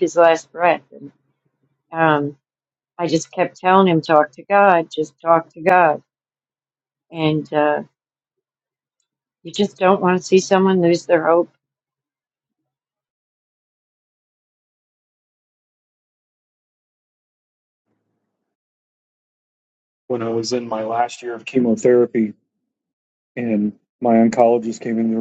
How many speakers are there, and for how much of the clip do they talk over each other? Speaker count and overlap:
2, no overlap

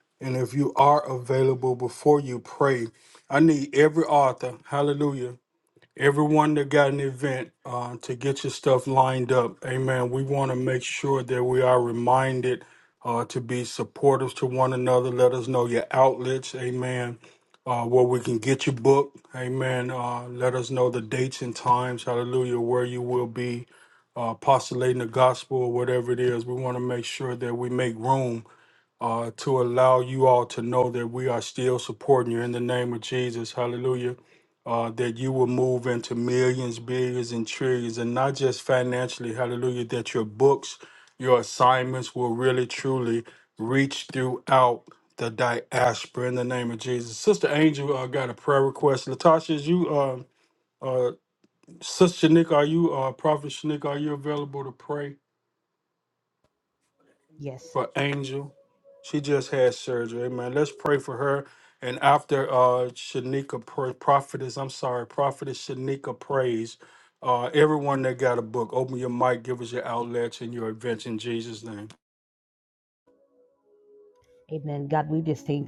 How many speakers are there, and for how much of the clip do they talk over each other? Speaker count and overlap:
2, no overlap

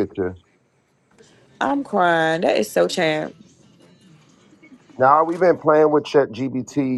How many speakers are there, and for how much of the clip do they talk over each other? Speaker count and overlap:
2, no overlap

